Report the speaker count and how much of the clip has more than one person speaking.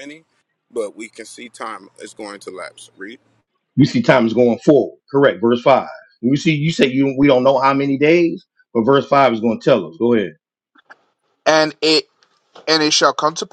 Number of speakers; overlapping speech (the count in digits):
3, no overlap